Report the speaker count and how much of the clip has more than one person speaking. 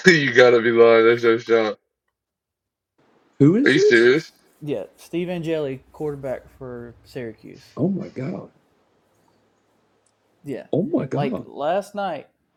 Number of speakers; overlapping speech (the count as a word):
three, about 5%